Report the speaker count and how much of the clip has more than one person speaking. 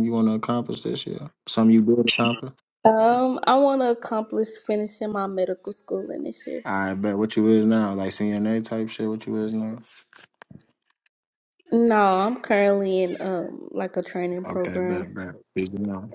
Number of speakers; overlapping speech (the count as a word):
two, about 4%